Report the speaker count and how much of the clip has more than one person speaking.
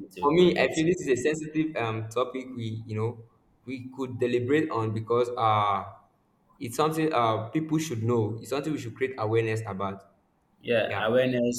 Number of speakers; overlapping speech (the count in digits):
2, about 7%